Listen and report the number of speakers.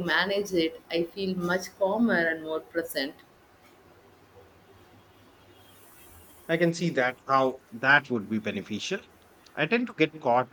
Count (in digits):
2